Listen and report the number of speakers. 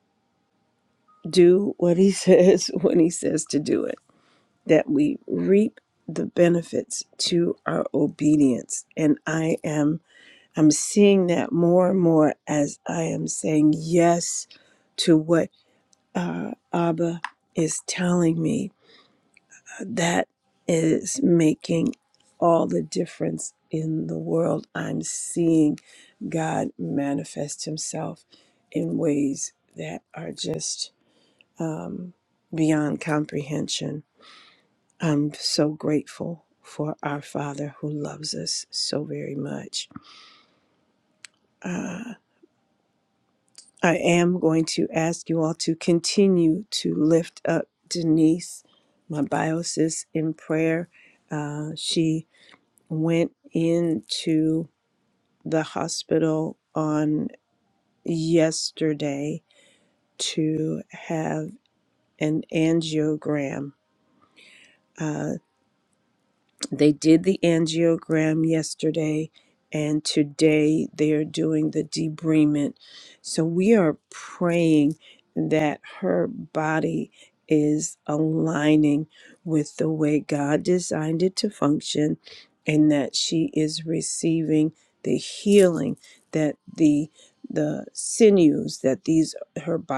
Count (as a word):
one